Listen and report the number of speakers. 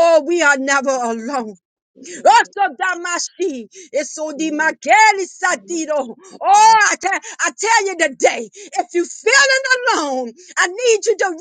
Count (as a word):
one